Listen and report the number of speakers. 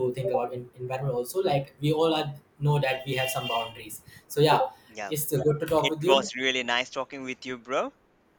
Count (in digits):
2